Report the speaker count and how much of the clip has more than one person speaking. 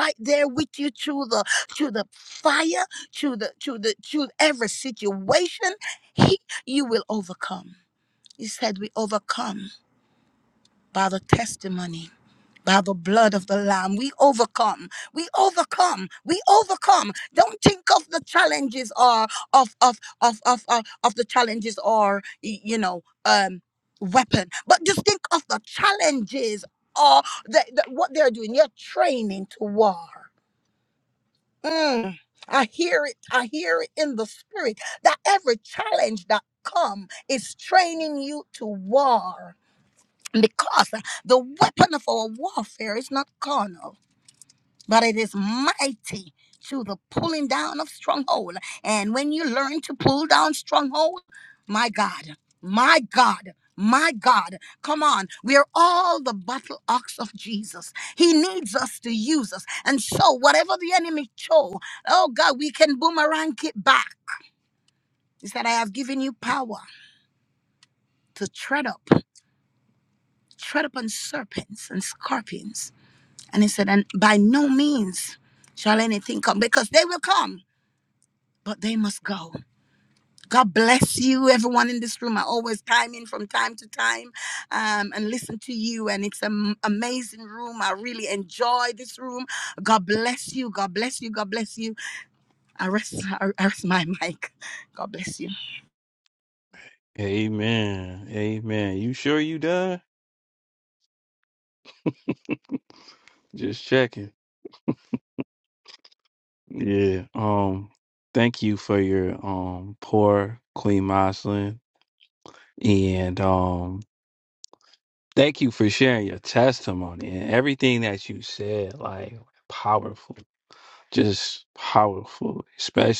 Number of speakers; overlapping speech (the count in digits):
2, no overlap